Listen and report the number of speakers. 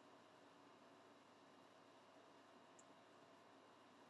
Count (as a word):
zero